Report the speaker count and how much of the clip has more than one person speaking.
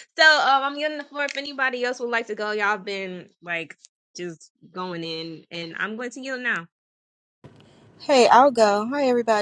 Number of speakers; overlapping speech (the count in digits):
2, under 1%